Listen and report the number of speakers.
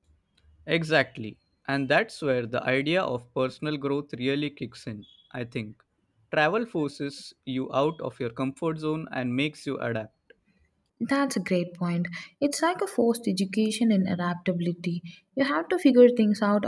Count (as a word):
two